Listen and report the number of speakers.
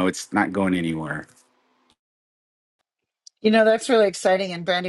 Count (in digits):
2